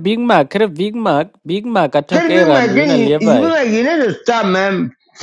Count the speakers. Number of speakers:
2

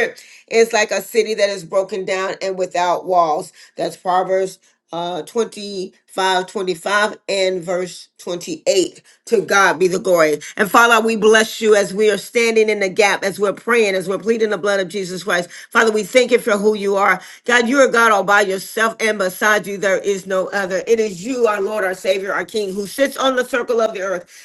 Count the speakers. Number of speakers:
1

